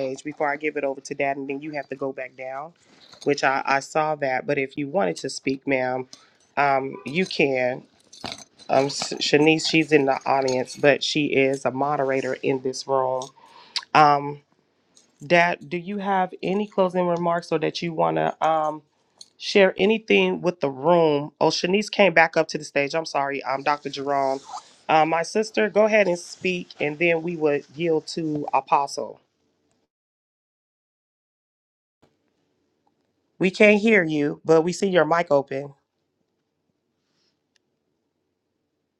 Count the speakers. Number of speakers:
1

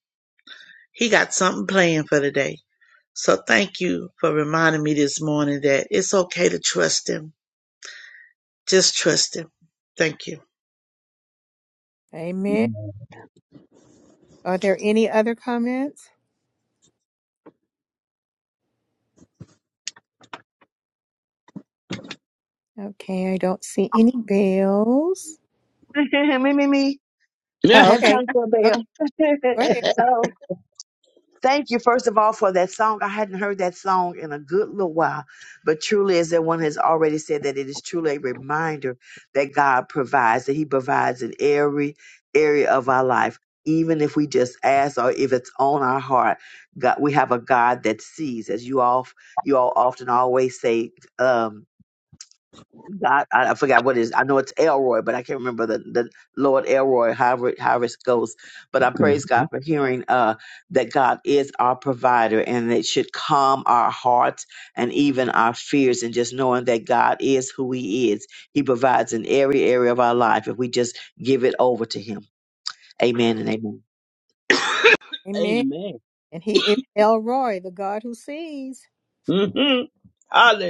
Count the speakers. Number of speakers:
4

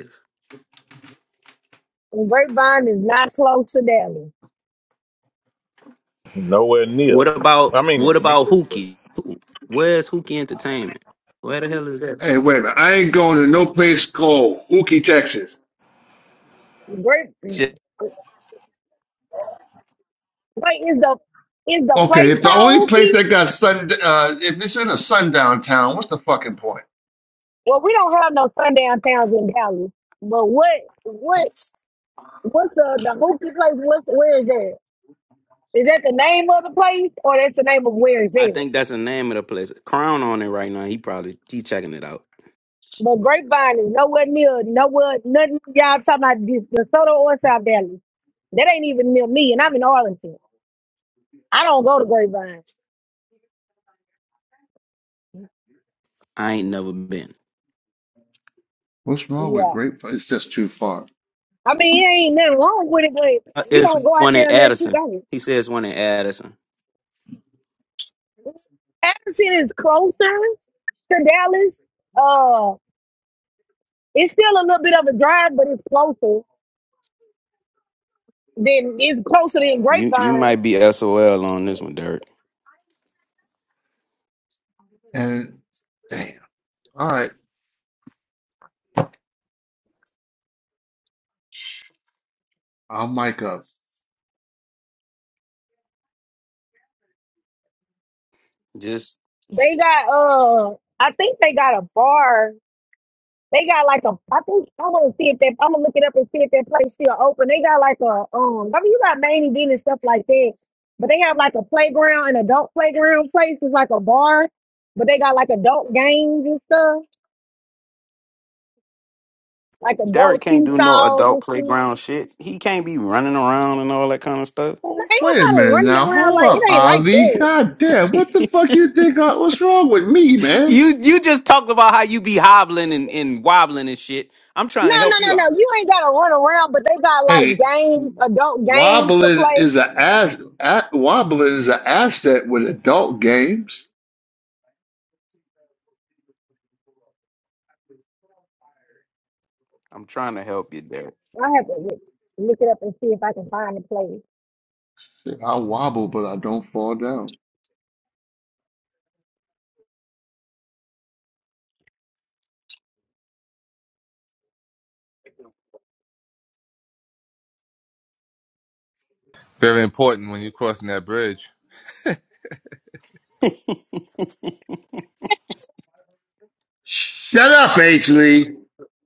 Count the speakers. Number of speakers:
5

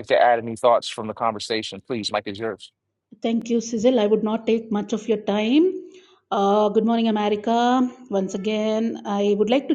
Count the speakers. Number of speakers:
2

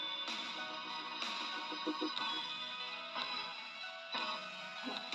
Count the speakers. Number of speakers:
0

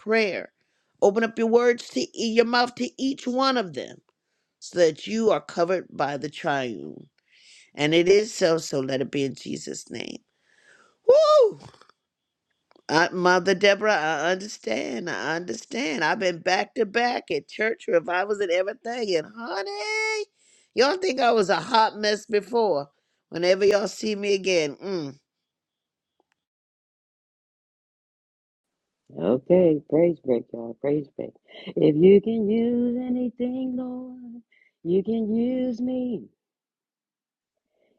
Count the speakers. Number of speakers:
2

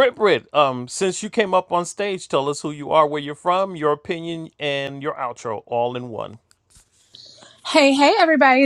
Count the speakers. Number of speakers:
2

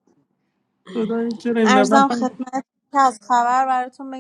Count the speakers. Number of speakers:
2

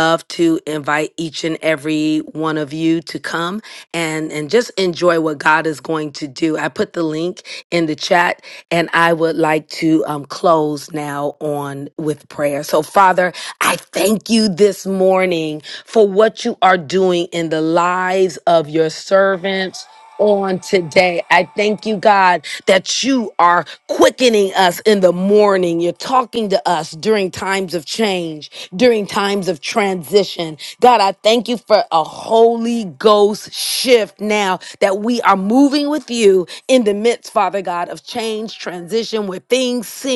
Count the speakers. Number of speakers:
1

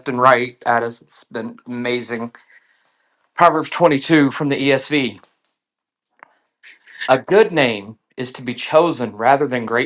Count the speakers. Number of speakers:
1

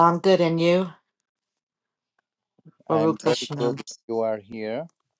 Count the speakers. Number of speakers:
2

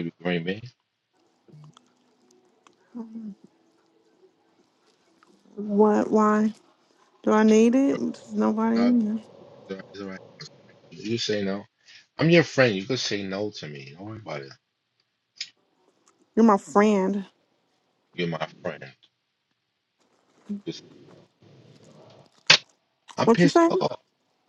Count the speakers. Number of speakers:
2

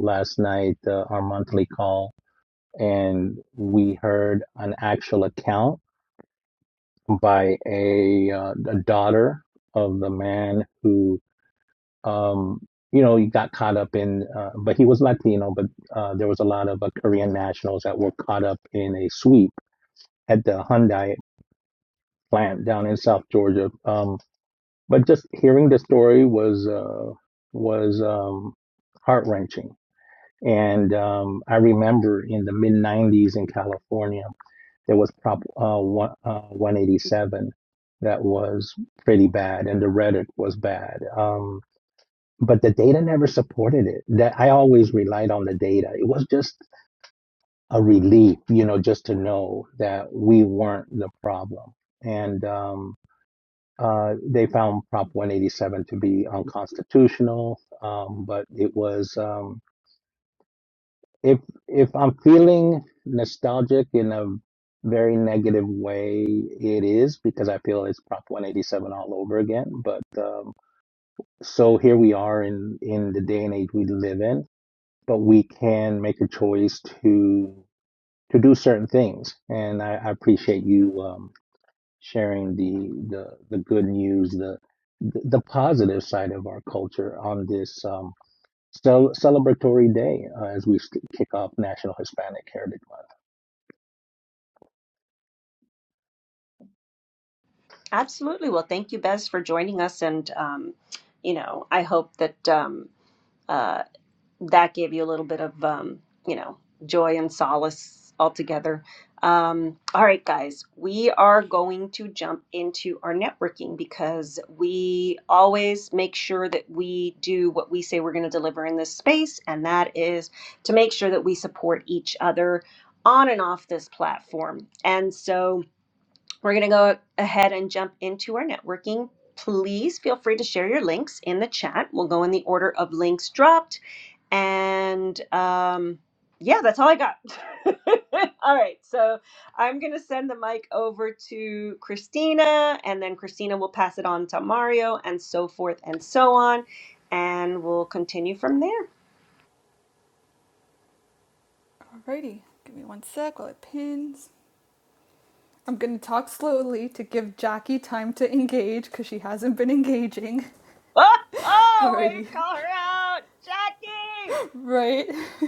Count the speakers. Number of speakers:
3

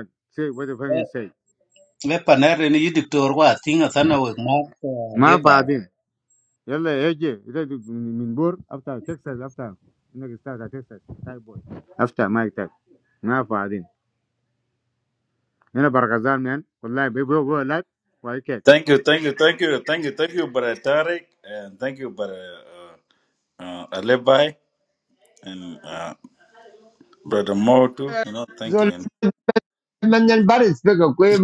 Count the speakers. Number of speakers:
4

